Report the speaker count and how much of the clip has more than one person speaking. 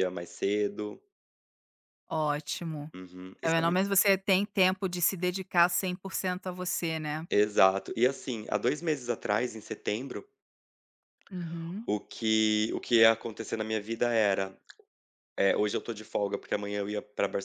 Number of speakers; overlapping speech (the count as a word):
two, under 1%